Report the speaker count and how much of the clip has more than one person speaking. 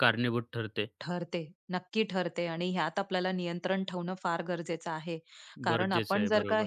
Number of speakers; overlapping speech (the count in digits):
2, about 16%